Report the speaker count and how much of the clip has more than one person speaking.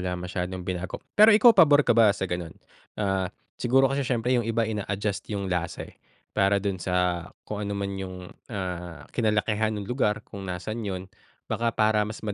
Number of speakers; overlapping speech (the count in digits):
1, no overlap